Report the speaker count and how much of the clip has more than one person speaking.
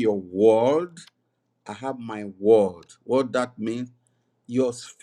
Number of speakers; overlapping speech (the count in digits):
1, no overlap